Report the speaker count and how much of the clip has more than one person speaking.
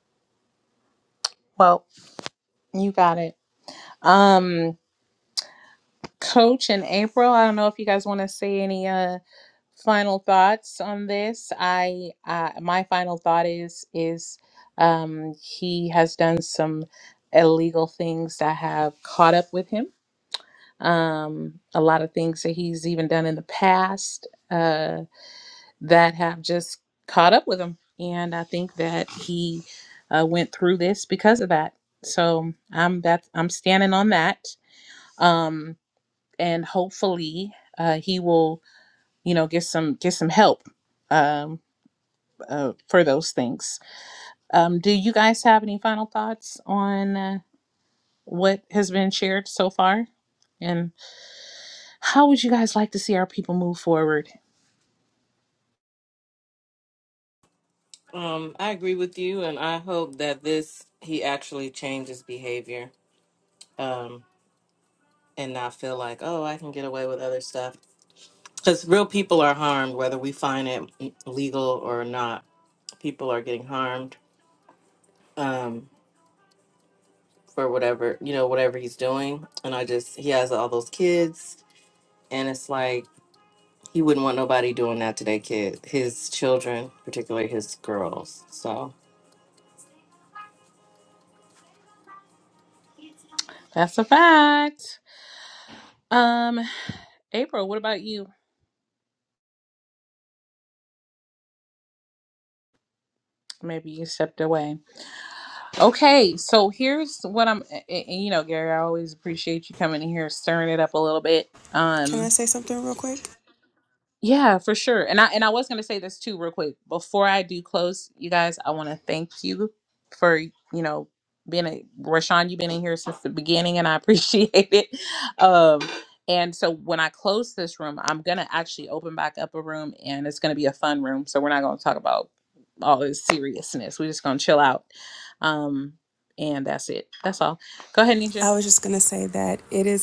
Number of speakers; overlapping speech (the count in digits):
3, under 1%